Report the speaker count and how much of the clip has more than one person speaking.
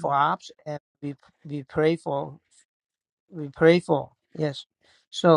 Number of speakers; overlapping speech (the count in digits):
1, no overlap